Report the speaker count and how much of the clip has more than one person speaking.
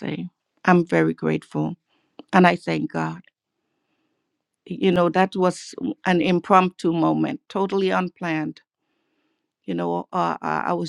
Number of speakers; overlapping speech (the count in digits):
1, no overlap